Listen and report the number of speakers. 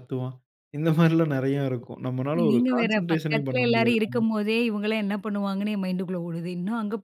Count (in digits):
2